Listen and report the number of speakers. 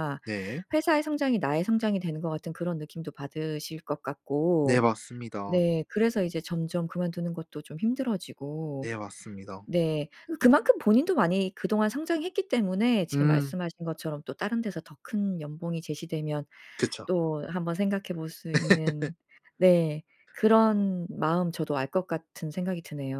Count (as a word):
two